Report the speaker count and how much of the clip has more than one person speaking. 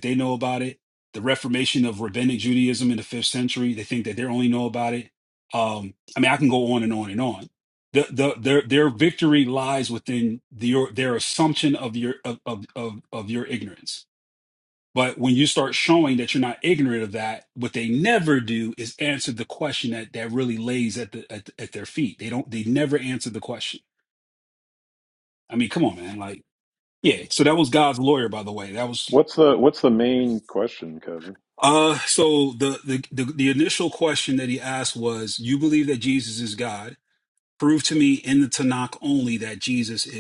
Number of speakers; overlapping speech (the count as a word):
two, under 1%